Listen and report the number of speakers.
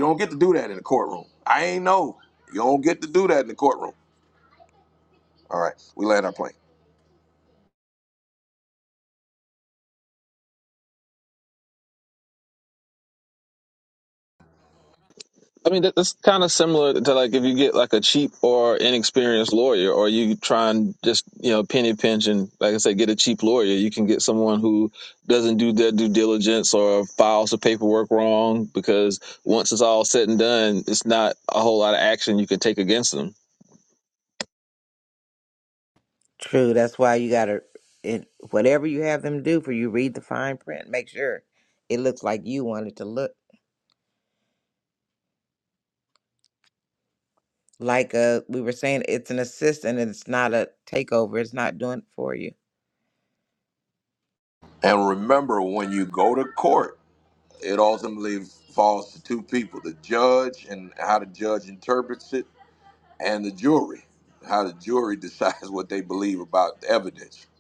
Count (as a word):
three